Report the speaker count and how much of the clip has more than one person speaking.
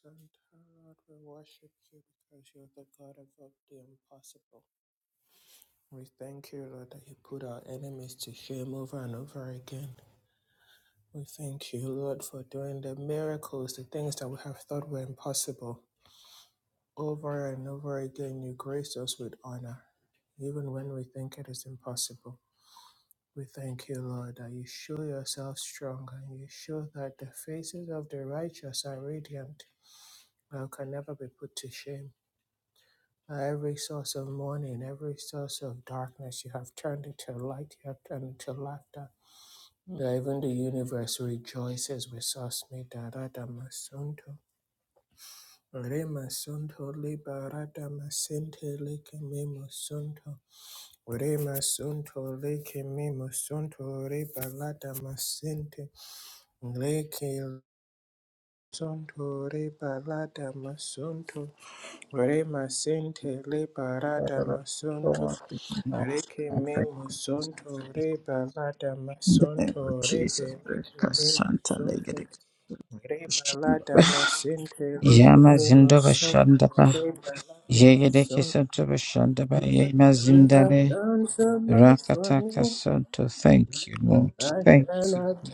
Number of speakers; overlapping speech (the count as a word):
two, about 8%